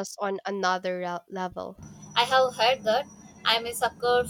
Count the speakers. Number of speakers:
two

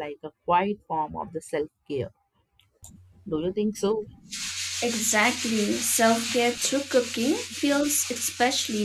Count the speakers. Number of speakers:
two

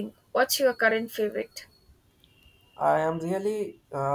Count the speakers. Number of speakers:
two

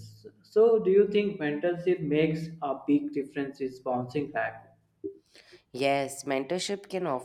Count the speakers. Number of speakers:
two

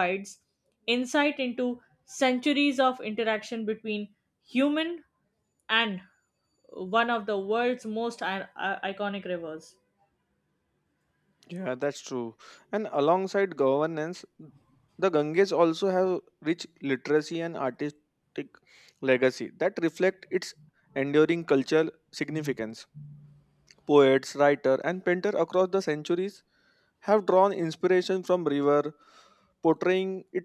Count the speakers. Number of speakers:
two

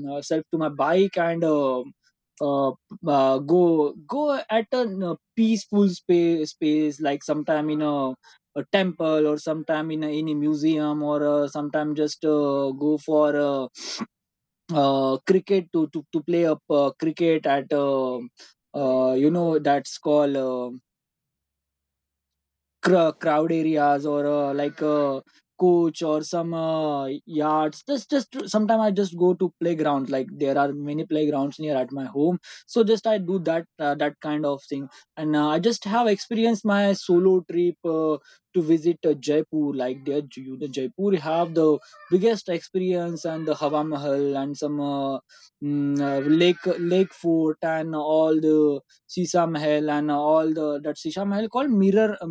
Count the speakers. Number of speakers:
one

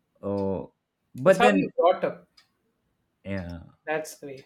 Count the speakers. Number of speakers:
two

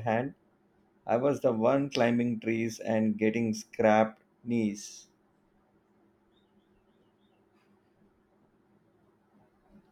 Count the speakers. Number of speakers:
one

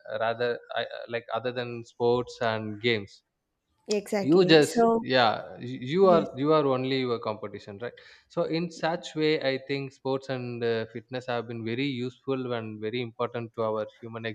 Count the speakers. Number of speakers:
two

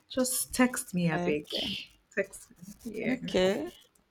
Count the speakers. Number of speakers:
two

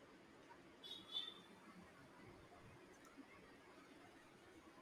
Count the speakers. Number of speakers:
zero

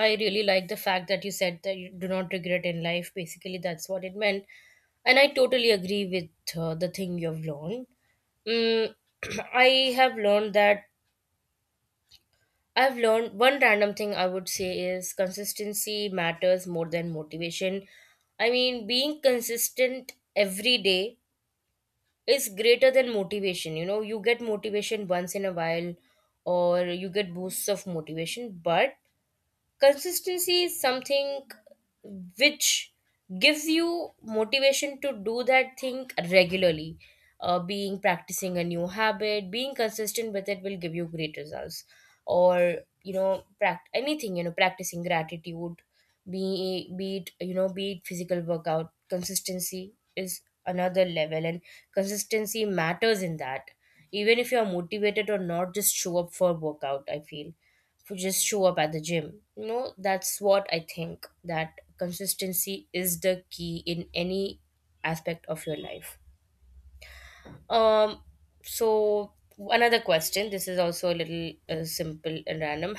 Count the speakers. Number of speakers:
one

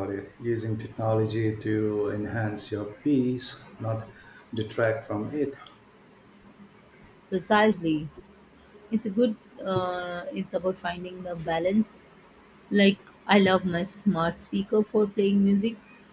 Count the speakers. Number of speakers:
two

